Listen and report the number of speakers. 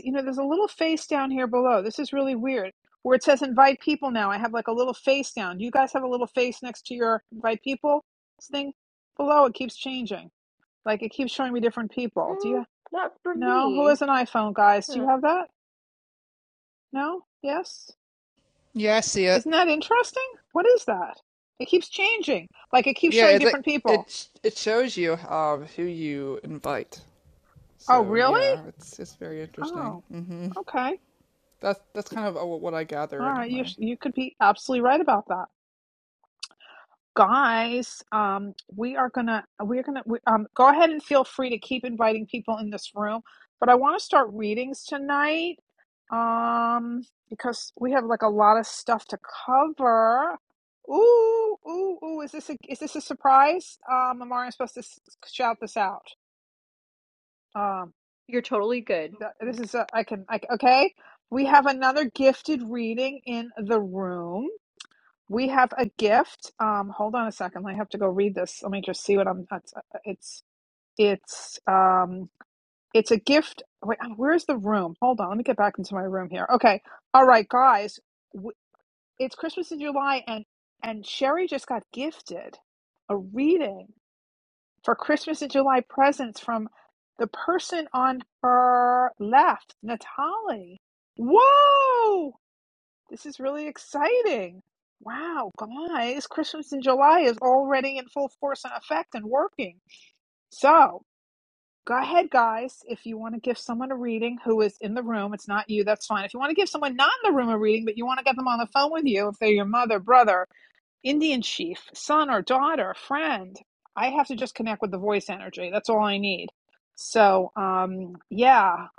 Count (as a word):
three